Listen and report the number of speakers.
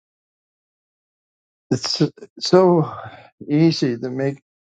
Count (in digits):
1